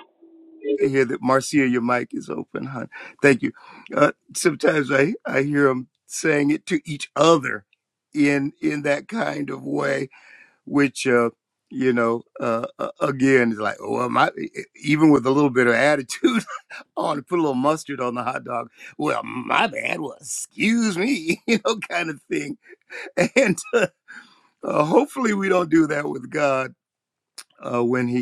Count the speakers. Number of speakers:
one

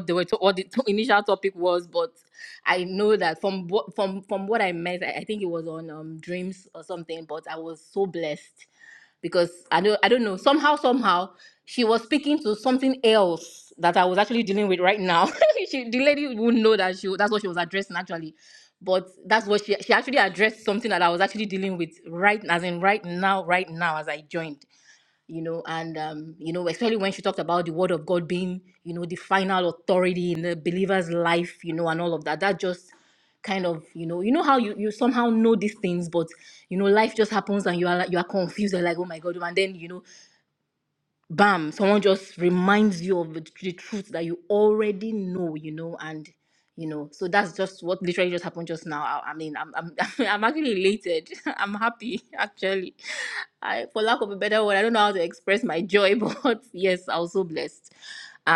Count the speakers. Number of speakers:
one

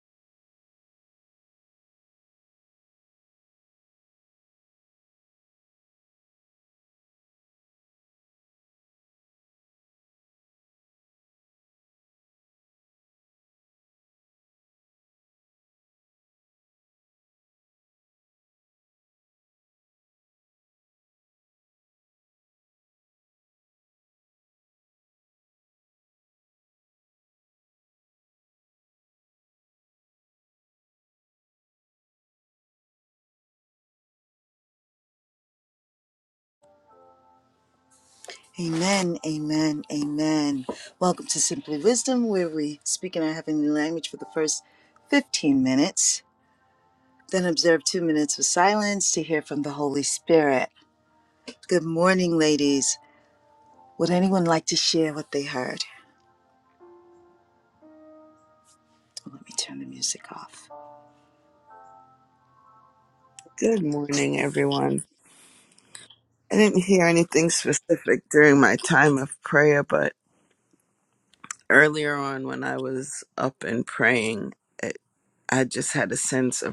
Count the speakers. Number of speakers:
two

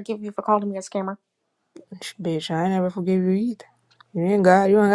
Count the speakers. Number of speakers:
two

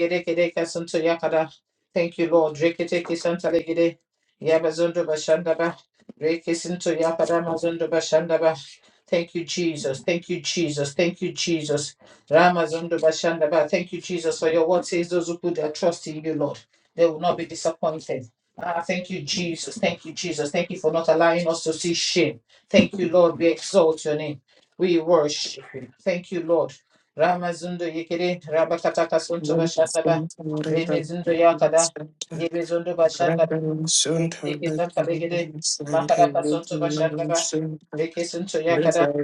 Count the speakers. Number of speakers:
two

